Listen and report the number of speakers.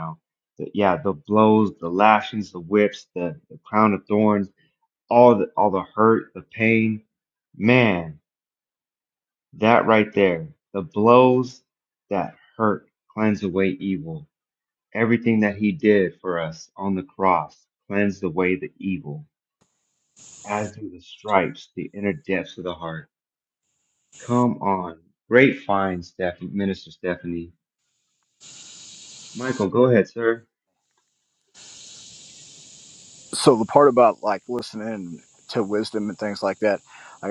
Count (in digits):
2